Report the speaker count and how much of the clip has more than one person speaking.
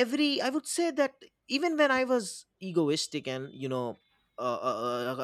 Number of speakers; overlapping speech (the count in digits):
1, no overlap